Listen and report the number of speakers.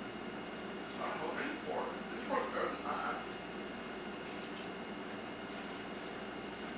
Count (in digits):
1